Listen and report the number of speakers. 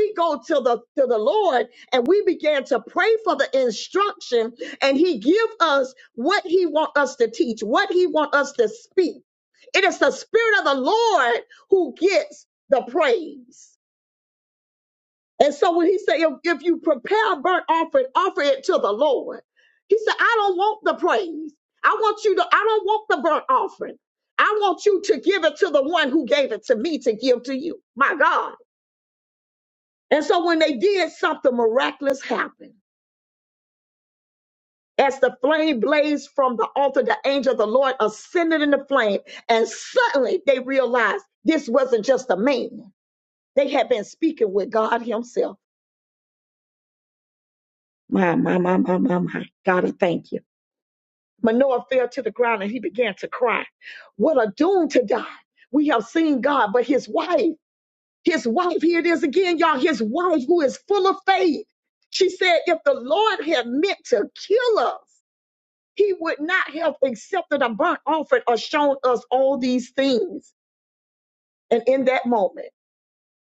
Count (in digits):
1